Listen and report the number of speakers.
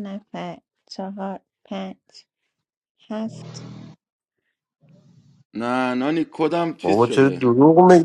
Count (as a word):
three